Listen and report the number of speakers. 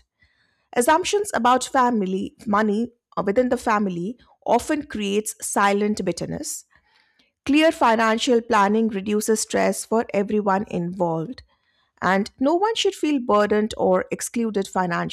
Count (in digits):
1